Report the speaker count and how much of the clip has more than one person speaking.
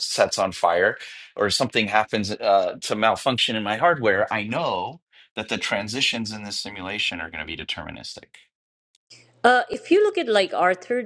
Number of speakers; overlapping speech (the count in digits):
2, no overlap